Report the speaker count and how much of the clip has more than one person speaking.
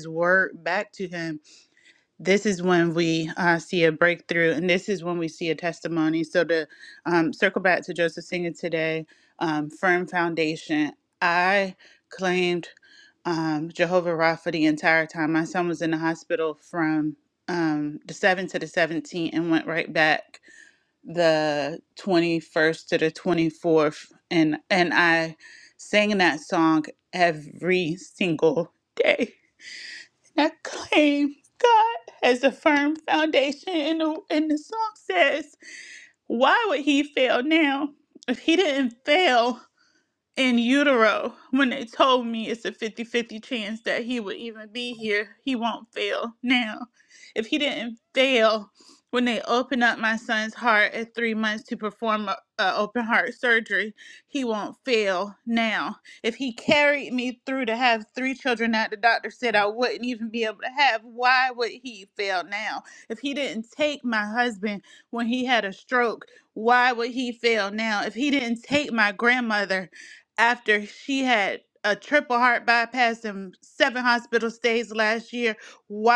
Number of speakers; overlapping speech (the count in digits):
1, no overlap